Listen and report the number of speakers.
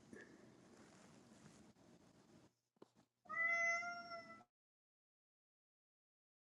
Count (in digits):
0